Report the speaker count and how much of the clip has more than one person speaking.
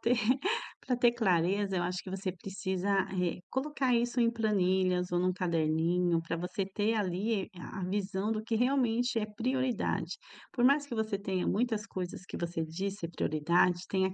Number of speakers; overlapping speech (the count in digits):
1, no overlap